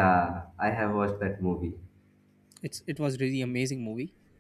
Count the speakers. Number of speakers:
two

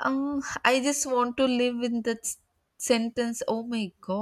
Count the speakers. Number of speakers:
one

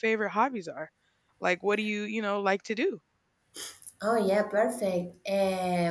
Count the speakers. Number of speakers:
two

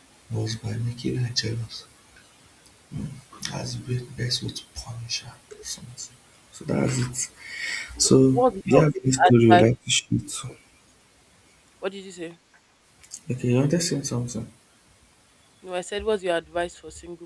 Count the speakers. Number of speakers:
two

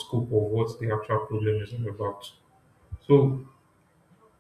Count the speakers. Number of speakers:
one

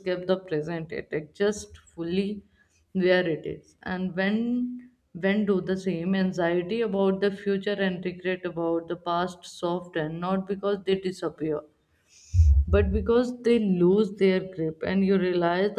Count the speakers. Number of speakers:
one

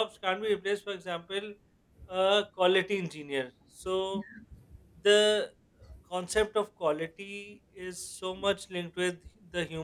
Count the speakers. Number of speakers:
one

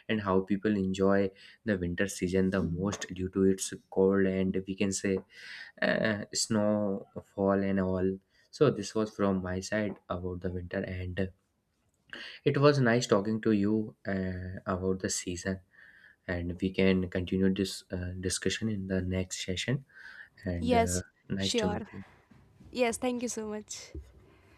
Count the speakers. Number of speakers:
two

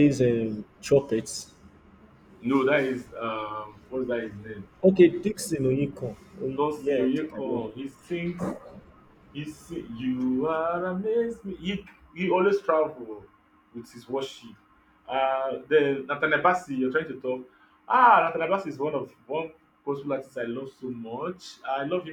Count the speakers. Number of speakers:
two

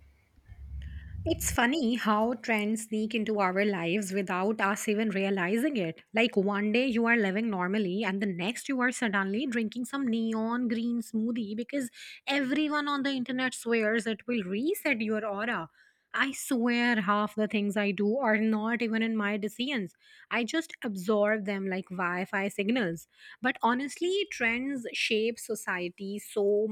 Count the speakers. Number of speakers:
one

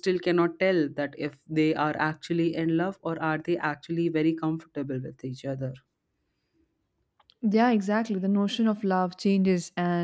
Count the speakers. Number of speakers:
two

